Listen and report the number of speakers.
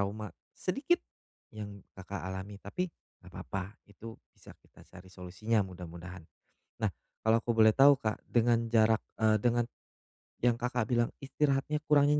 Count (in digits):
1